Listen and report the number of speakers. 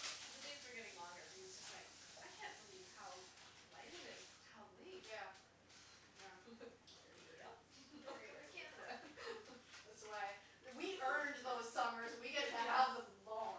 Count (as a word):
two